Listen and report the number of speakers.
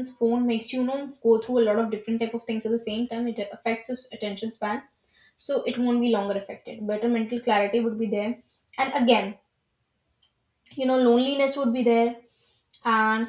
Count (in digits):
1